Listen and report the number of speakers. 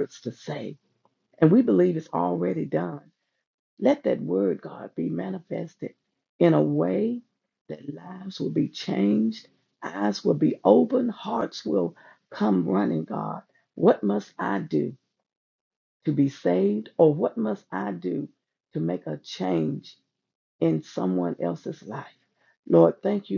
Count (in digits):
1